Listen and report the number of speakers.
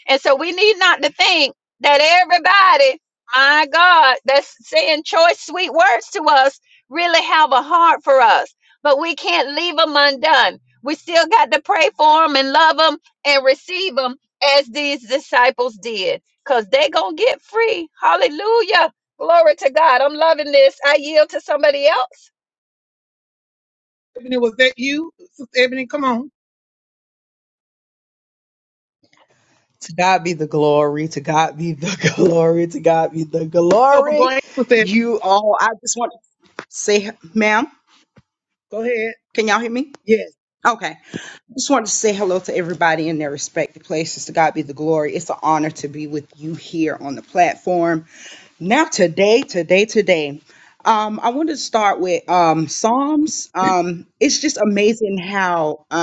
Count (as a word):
three